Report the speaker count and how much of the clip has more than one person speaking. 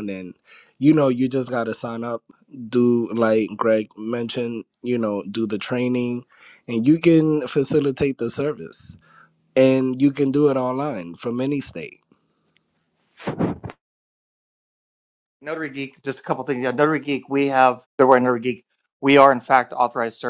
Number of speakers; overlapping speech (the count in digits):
2, no overlap